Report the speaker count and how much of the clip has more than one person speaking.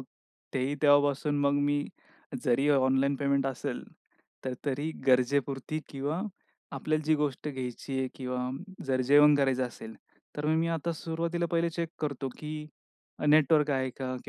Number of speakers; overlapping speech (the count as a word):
one, no overlap